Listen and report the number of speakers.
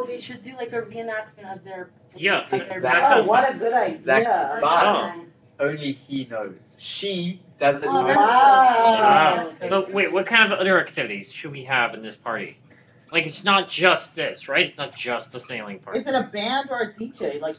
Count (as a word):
four